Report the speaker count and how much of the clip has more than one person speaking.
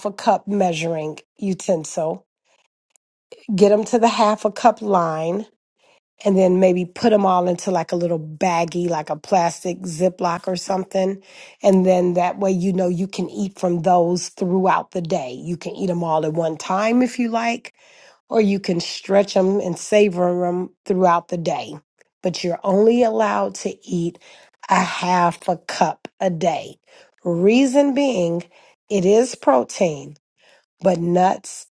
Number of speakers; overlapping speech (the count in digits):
1, no overlap